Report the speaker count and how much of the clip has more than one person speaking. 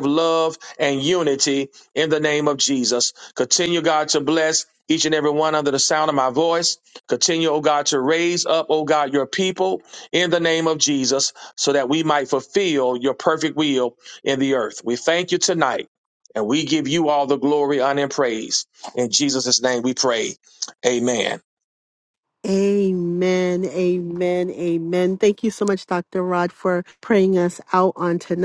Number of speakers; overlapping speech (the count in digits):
2, no overlap